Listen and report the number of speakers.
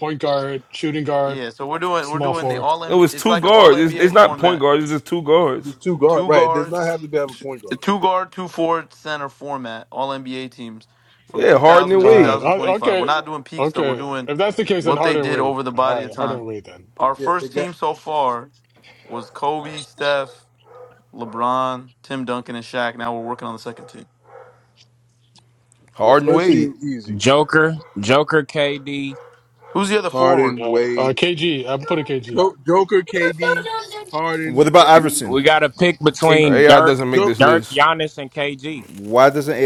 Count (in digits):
6